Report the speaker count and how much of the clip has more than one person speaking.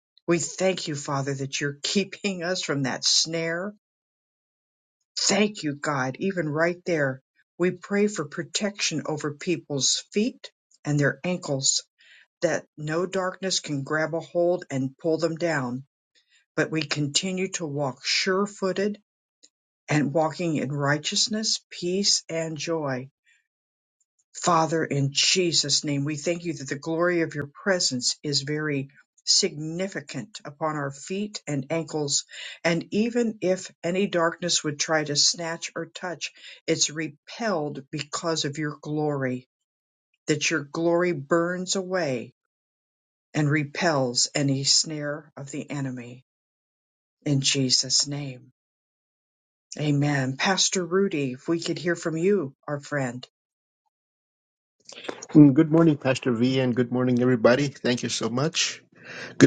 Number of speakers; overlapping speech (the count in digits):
2, no overlap